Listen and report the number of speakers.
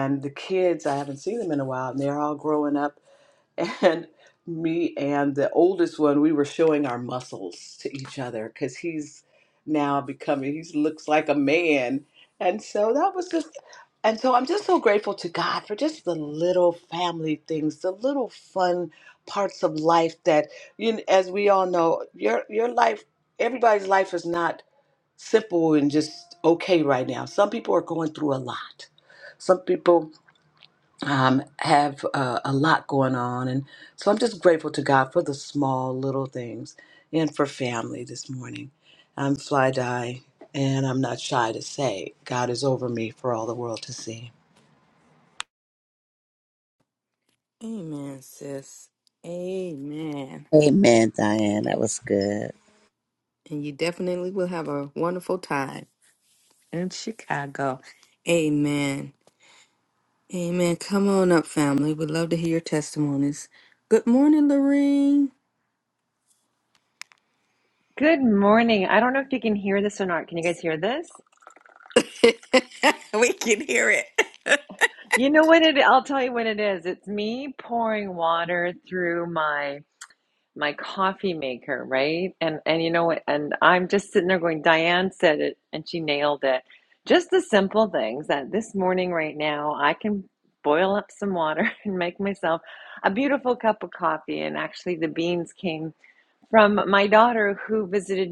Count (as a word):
four